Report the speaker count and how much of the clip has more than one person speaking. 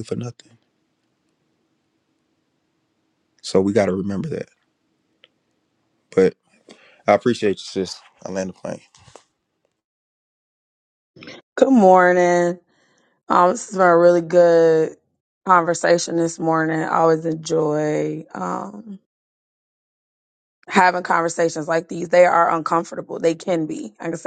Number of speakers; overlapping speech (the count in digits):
2, no overlap